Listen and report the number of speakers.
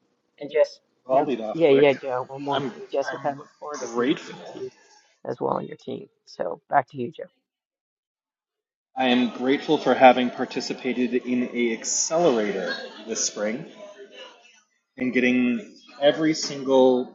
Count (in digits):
2